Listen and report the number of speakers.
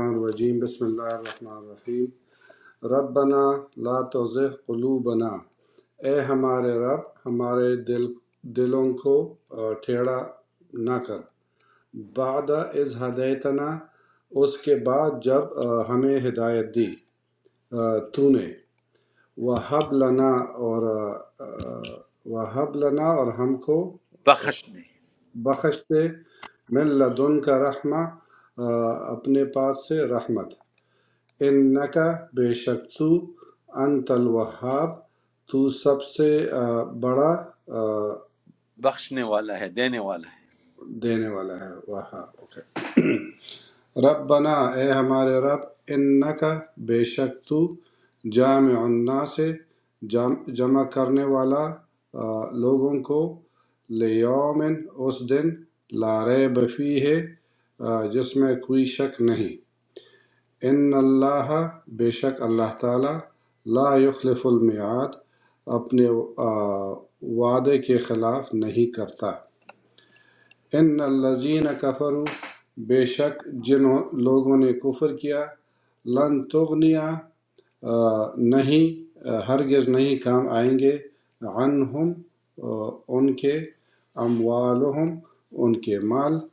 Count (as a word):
two